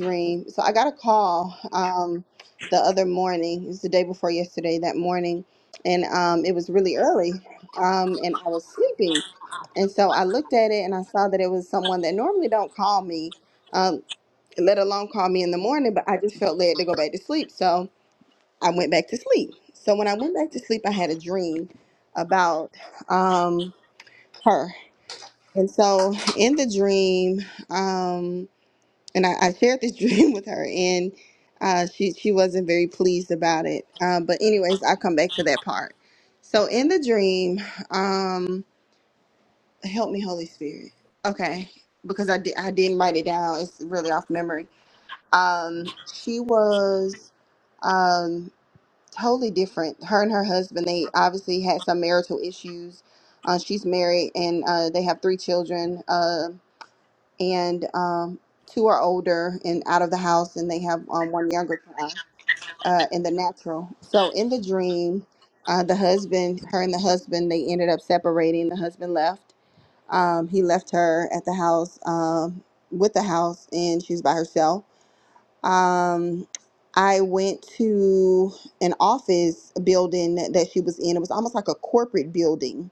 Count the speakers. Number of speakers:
one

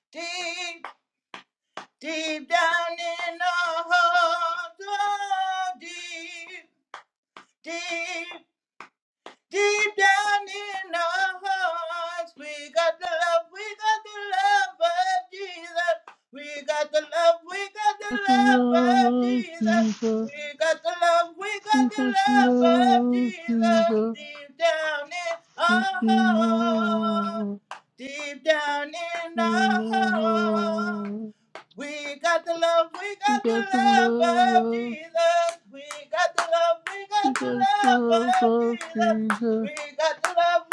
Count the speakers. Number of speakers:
two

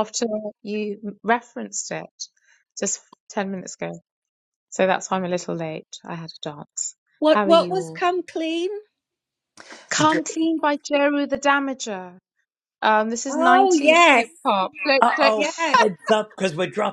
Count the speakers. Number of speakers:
three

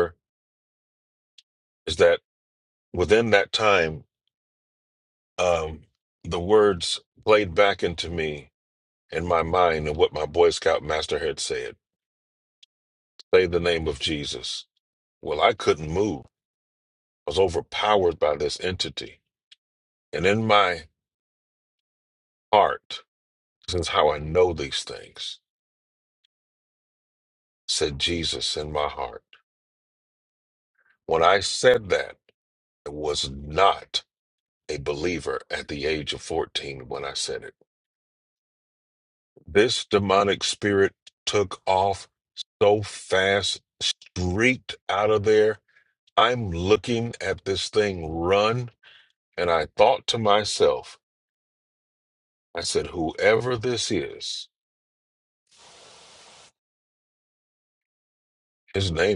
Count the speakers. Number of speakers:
one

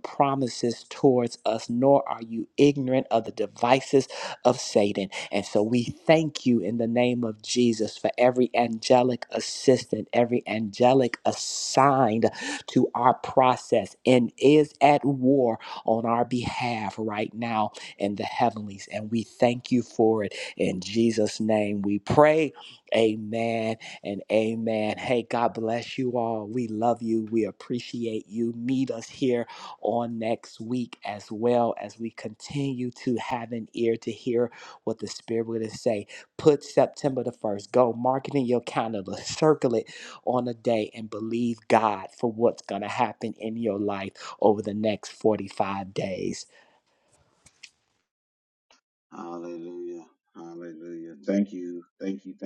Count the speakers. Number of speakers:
two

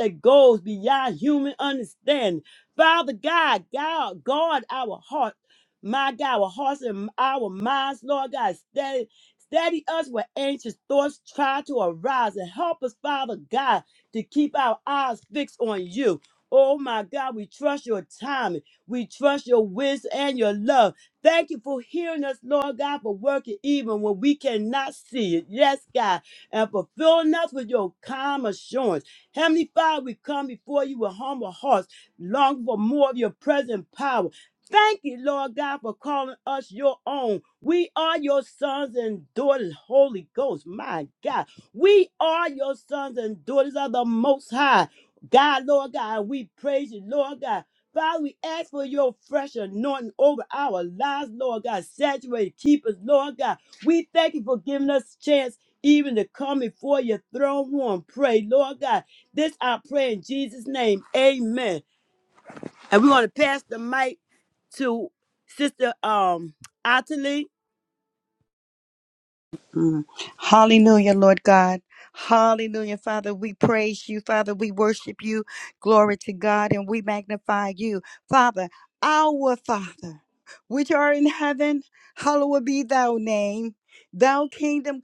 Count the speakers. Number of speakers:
two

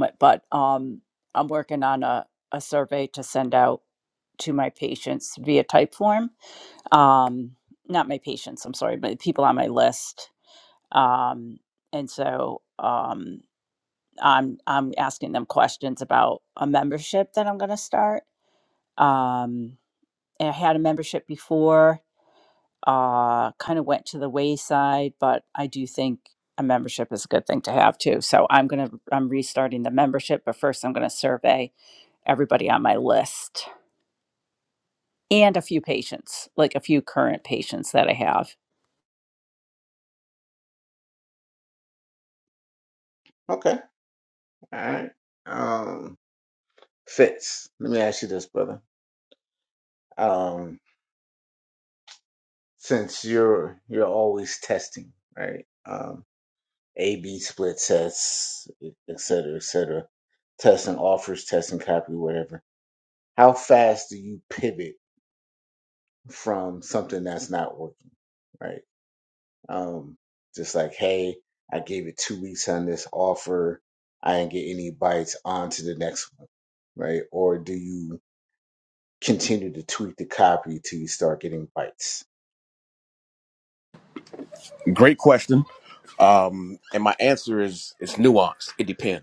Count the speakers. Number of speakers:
three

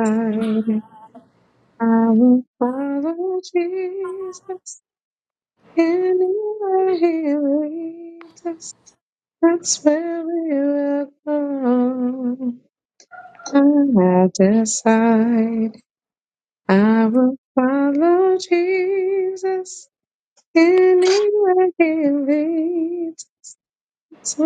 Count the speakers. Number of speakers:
one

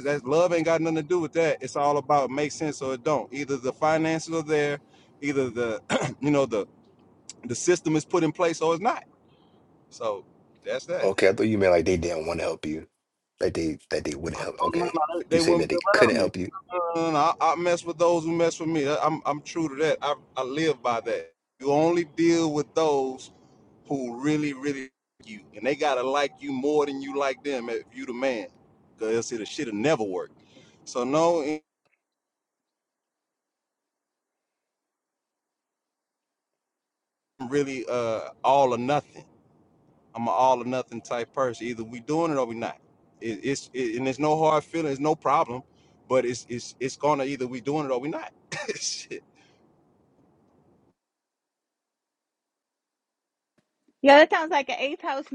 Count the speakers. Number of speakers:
three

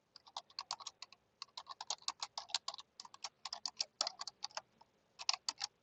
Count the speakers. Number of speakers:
zero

